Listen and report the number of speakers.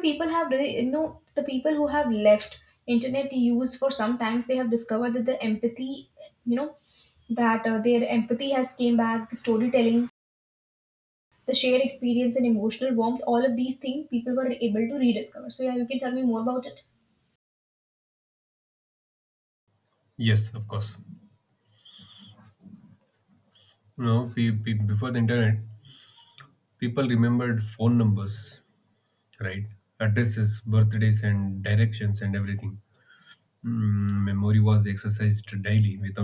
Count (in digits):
2